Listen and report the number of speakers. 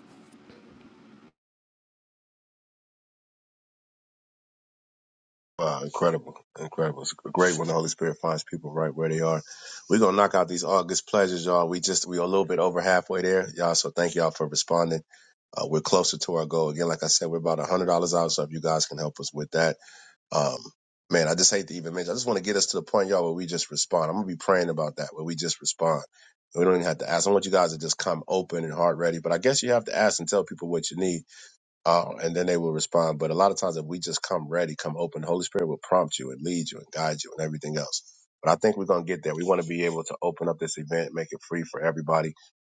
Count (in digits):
1